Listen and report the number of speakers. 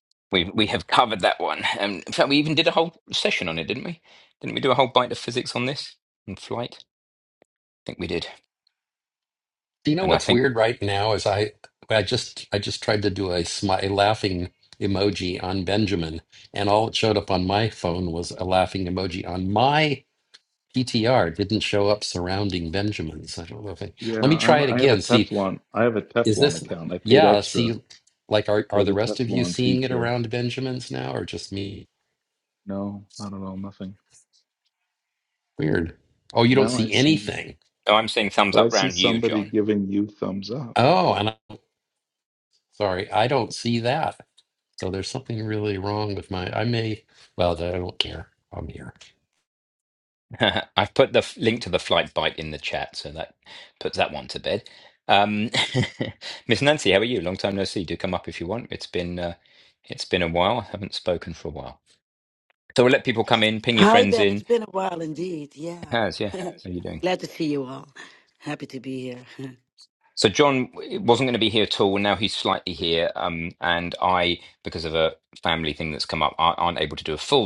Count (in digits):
4